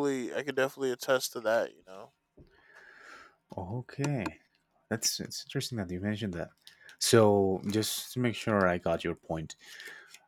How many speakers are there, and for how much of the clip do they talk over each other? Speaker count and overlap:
two, no overlap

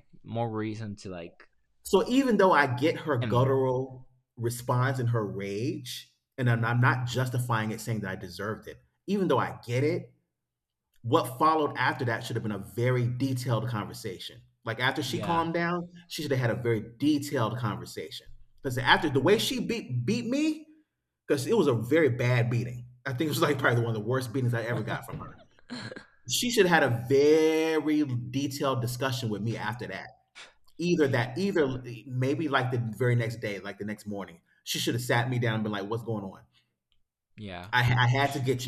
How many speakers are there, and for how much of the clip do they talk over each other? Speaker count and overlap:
two, about 2%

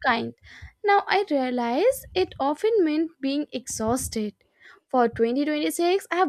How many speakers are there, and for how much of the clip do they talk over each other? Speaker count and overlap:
one, no overlap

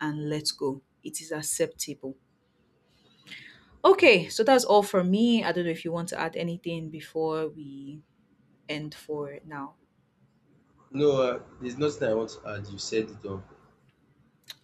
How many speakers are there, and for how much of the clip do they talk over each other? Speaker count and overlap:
two, no overlap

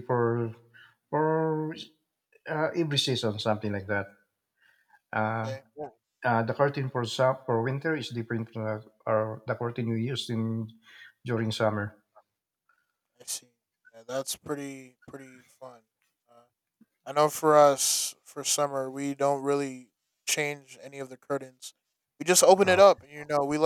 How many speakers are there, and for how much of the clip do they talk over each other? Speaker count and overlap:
two, about 2%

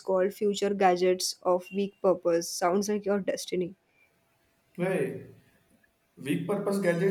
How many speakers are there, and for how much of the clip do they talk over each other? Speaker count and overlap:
two, no overlap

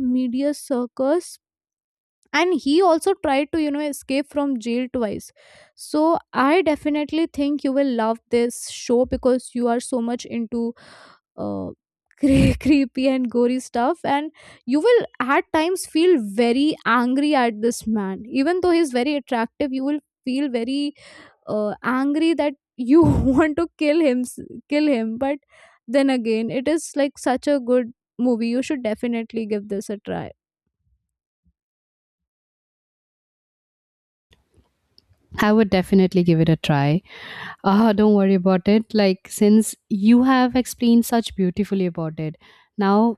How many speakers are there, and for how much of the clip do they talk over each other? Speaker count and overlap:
two, no overlap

